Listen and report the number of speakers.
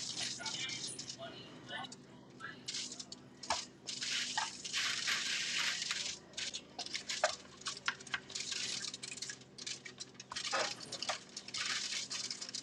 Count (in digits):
0